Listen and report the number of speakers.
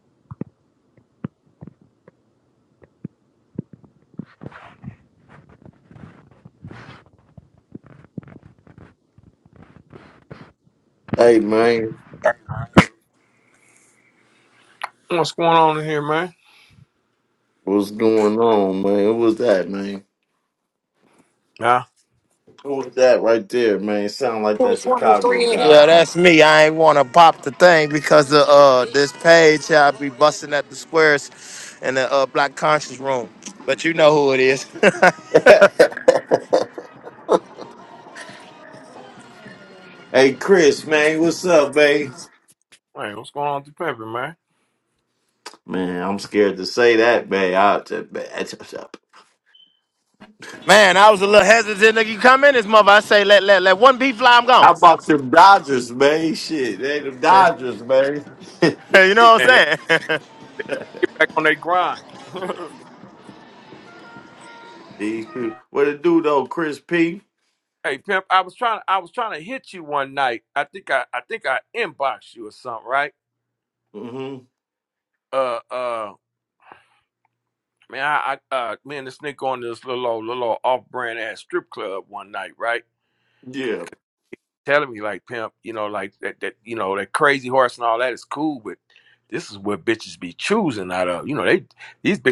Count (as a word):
three